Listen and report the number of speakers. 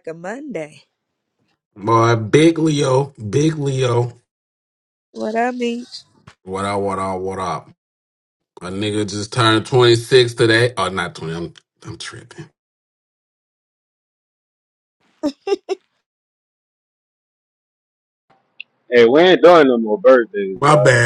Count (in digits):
3